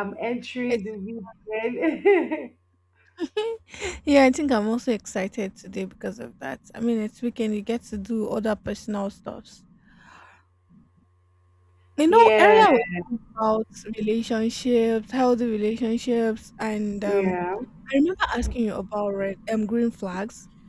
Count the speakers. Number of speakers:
two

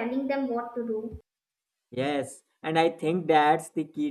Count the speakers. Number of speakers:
two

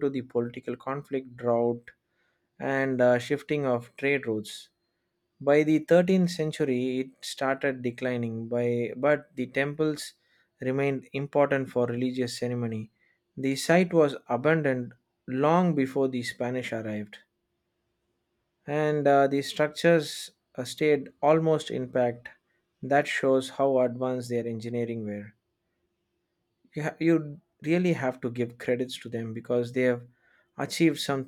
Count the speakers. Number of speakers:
one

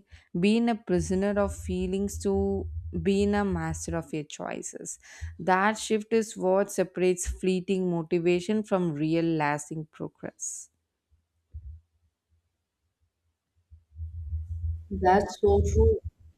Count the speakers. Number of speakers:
two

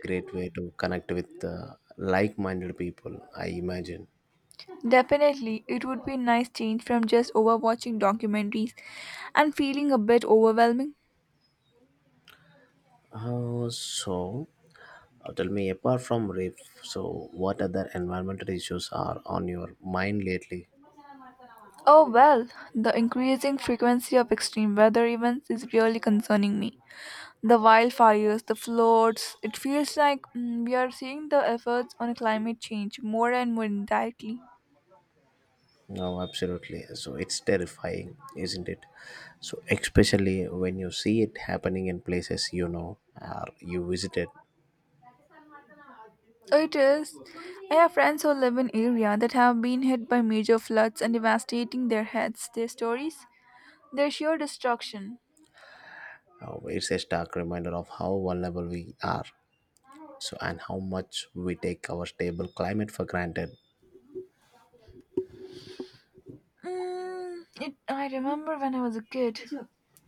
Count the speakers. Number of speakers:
two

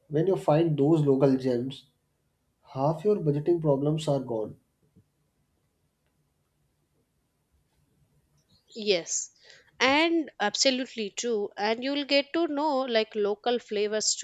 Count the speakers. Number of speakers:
two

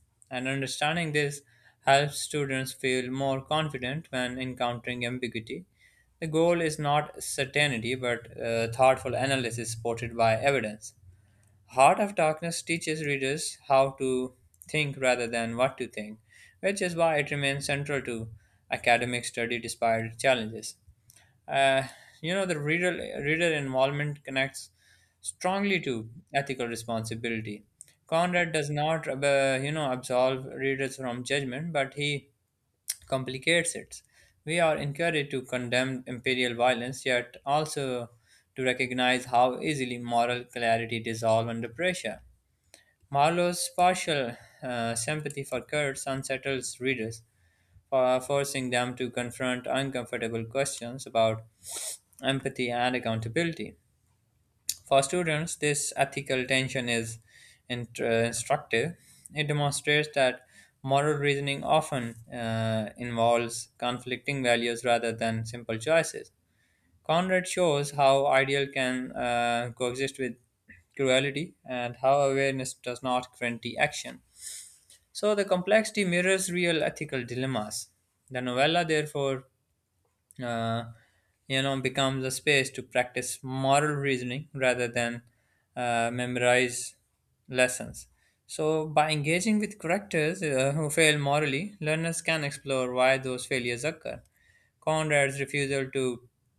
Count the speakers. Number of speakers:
one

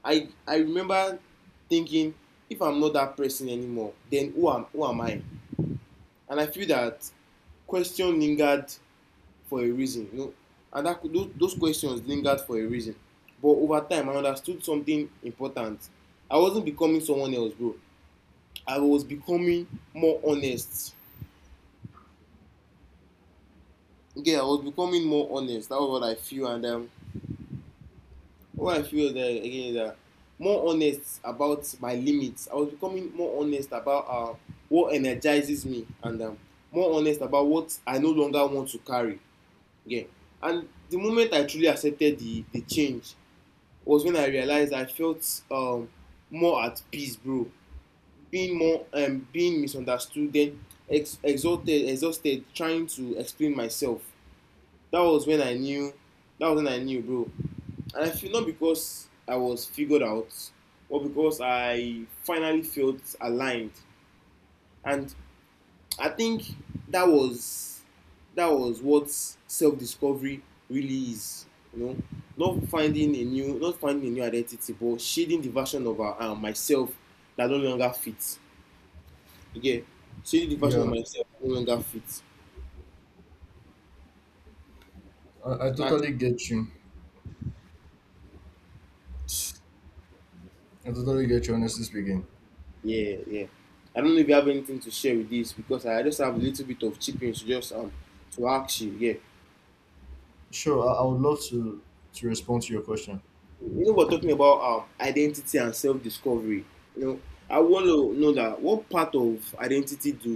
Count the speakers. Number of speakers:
two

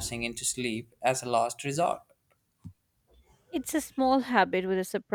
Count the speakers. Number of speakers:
two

